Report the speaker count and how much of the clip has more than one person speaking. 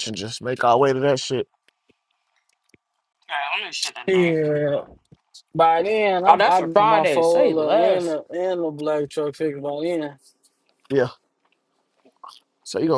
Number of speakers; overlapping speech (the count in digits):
3, about 16%